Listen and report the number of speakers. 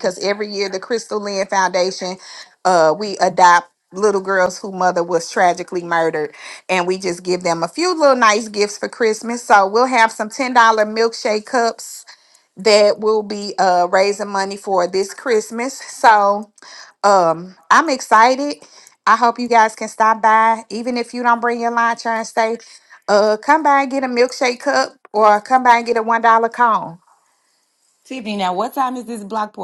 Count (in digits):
2